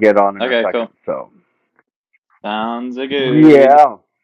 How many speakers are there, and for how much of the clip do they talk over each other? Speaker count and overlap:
two, about 23%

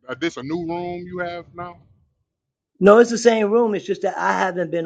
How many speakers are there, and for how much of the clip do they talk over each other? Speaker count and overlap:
two, no overlap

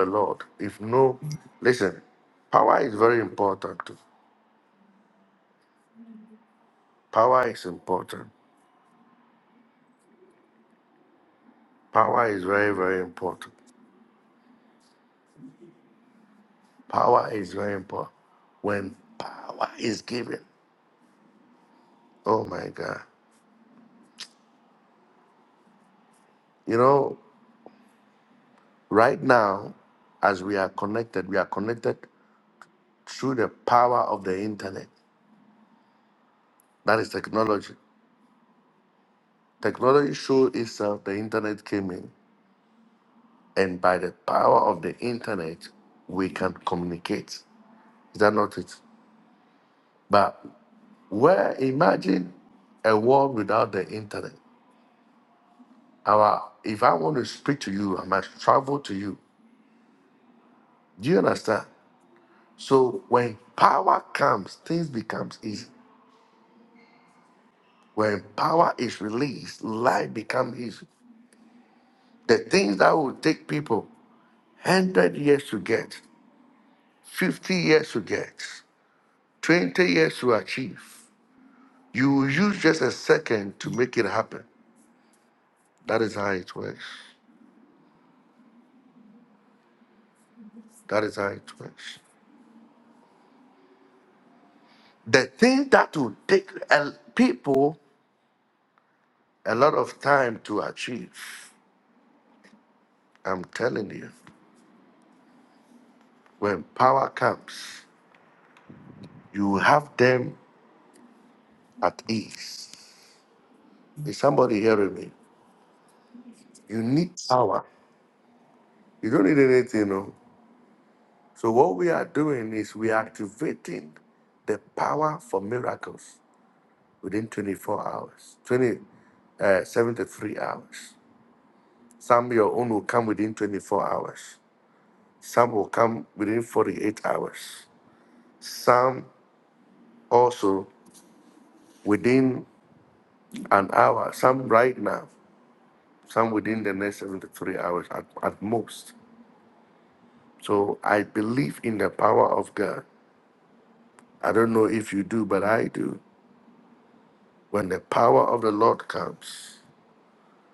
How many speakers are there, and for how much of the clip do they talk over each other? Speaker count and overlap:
one, no overlap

